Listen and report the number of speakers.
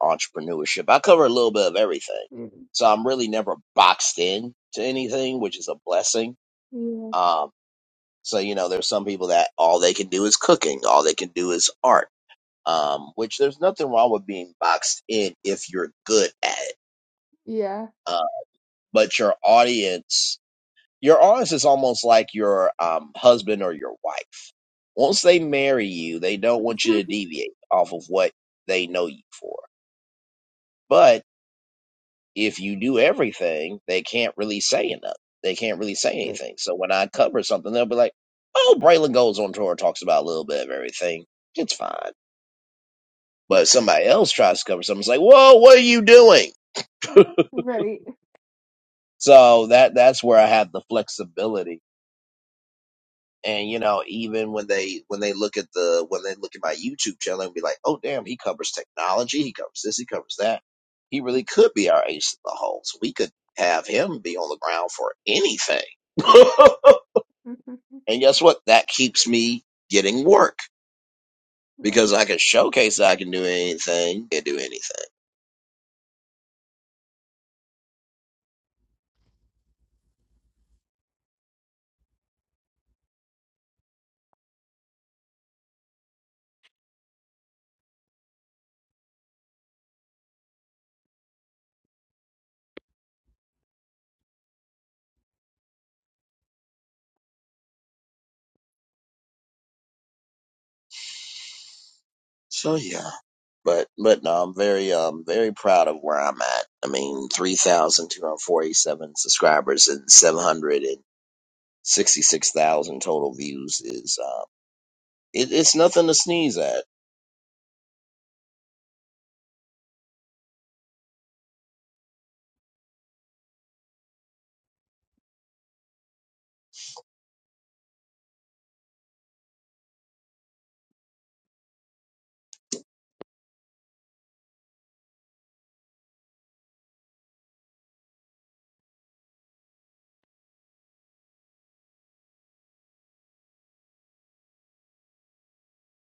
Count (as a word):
two